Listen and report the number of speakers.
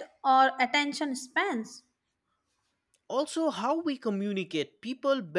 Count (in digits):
2